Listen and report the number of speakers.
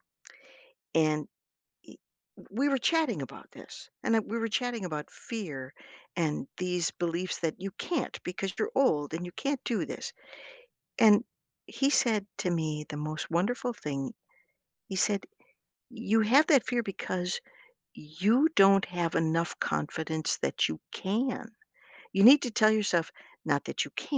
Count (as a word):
one